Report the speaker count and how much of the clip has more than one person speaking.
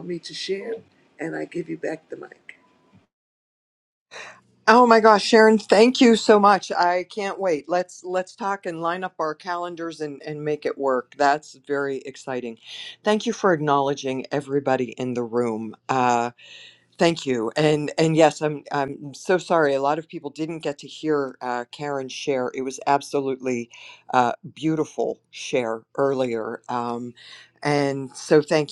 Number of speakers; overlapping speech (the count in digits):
2, no overlap